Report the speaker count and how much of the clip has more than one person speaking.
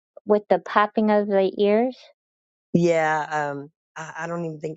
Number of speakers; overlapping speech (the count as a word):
two, no overlap